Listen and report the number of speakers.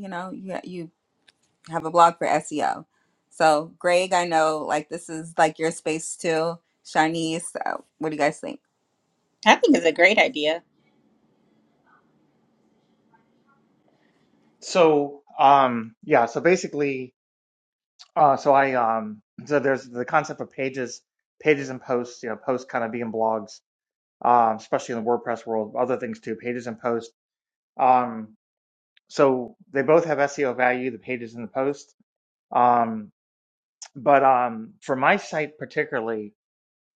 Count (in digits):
3